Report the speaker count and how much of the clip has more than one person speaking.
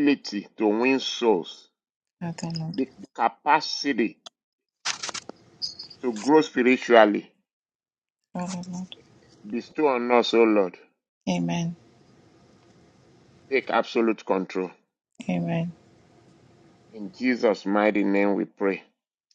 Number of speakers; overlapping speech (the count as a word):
two, under 1%